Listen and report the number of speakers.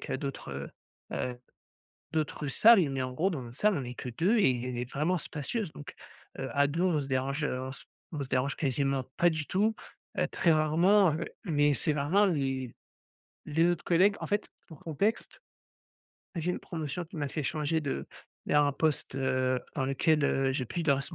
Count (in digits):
1